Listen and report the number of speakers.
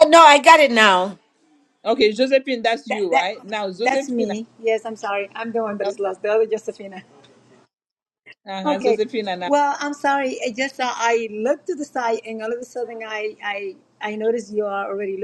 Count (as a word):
three